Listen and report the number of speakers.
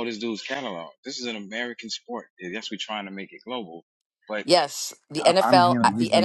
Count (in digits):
2